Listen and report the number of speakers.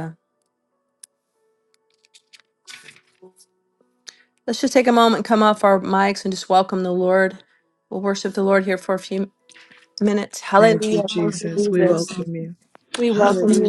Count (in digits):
2